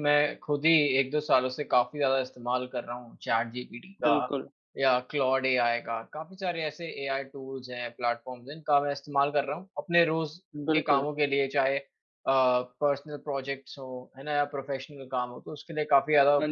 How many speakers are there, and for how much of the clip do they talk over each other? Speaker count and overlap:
2, about 4%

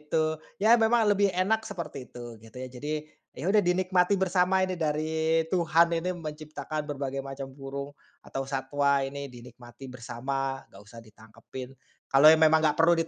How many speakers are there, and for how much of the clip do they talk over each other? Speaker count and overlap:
1, no overlap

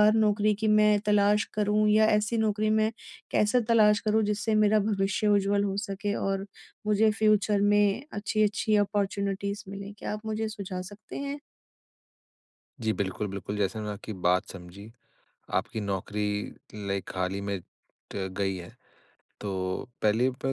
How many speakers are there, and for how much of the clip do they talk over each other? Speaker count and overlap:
2, no overlap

